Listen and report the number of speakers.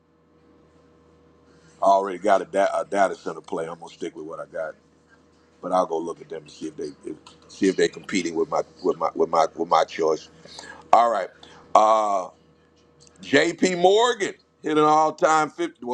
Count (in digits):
1